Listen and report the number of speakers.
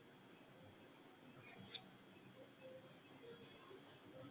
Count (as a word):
zero